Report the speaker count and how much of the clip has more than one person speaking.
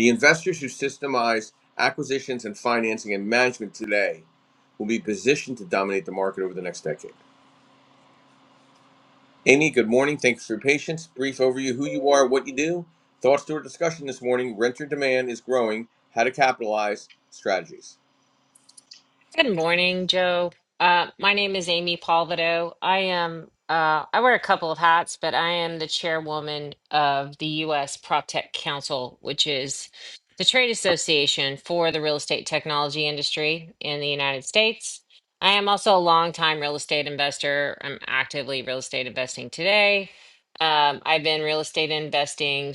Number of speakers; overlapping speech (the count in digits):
2, no overlap